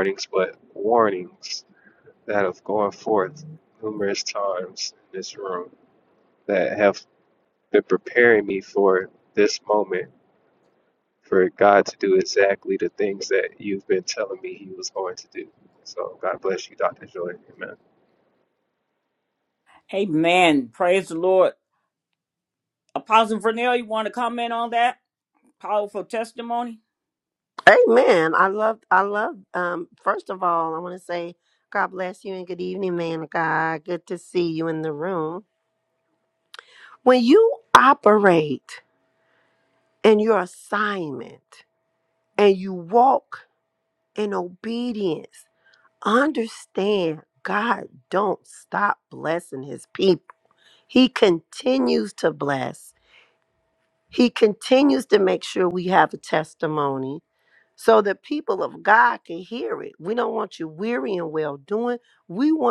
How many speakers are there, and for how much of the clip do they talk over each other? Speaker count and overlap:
three, no overlap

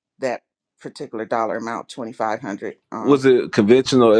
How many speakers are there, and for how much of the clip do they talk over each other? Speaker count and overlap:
two, no overlap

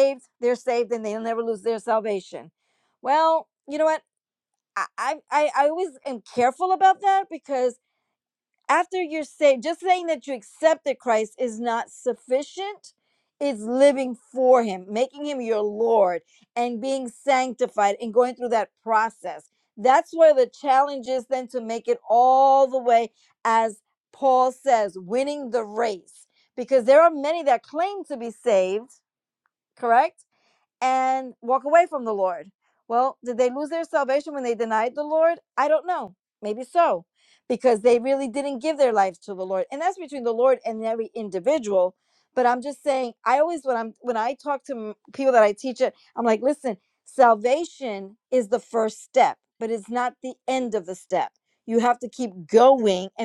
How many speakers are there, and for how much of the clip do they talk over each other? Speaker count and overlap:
one, no overlap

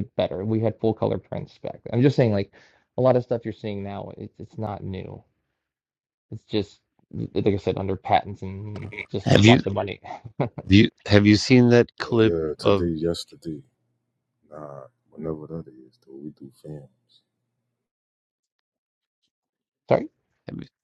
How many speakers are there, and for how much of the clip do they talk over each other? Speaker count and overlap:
three, about 4%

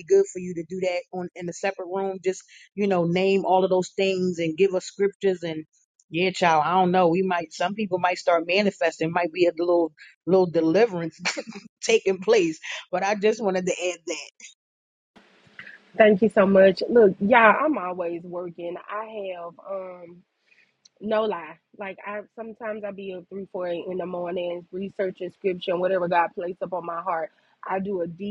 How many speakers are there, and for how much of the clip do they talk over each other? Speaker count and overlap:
two, no overlap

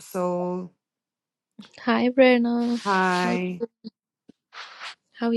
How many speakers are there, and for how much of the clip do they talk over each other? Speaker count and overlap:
two, about 4%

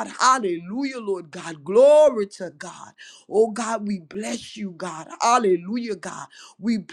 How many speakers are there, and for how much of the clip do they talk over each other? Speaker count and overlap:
one, no overlap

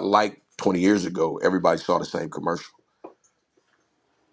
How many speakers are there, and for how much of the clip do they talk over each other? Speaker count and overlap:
one, no overlap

